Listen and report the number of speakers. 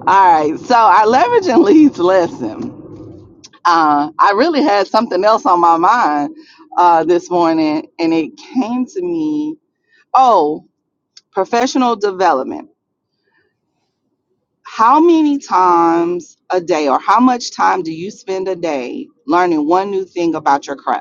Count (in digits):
1